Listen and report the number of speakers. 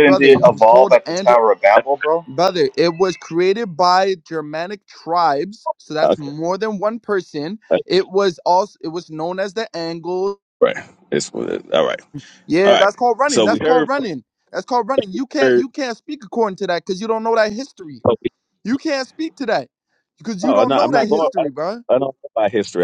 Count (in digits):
3